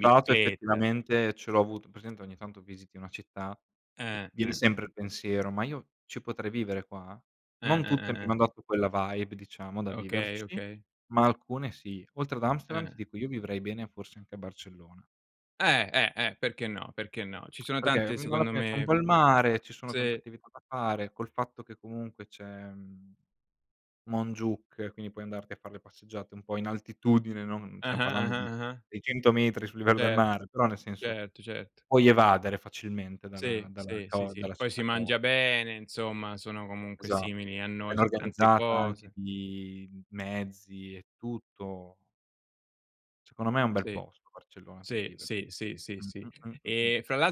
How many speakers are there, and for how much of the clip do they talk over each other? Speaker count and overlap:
2, about 20%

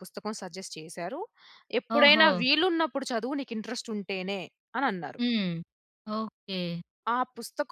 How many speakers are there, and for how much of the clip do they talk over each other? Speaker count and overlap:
2, about 7%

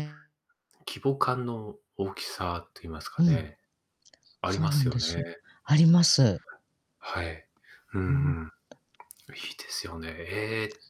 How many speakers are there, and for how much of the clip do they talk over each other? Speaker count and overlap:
2, about 11%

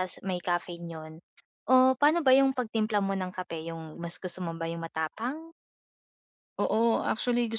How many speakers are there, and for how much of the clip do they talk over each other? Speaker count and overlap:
2, no overlap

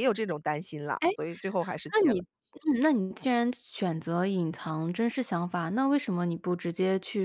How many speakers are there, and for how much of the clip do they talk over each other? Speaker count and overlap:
2, about 7%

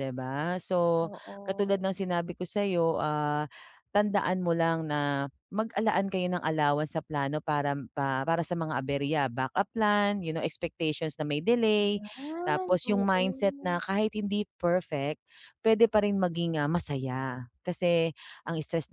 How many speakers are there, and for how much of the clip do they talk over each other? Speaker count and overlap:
2, about 8%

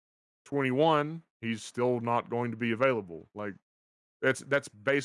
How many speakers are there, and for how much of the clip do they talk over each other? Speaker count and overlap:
1, no overlap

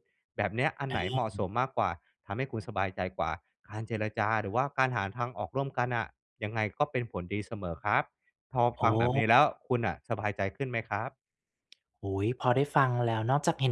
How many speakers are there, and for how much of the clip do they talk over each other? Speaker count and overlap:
2, about 1%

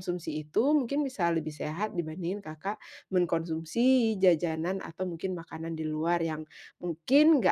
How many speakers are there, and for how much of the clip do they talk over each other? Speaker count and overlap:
1, no overlap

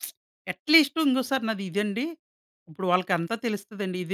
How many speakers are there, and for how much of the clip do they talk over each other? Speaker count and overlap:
1, no overlap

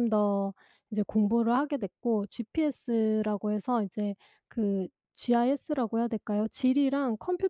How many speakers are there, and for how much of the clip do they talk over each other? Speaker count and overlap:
1, no overlap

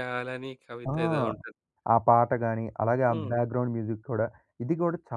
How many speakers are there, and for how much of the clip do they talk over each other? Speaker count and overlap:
2, about 8%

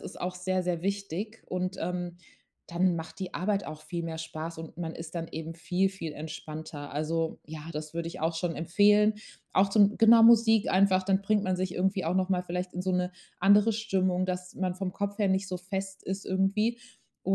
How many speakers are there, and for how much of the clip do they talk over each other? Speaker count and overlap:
1, no overlap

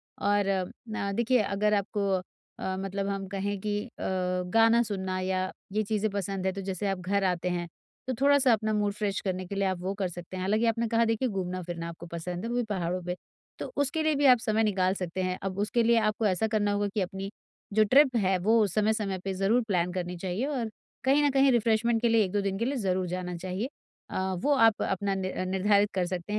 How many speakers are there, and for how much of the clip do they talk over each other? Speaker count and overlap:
1, no overlap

